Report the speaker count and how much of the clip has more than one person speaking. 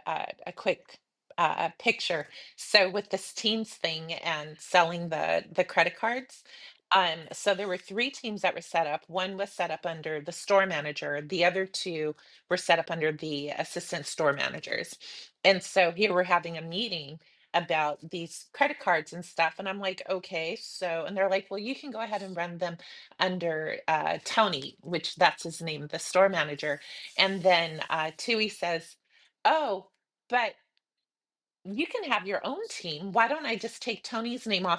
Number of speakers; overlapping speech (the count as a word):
one, no overlap